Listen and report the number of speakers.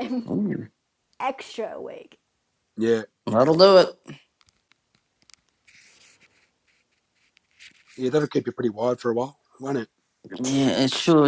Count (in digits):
3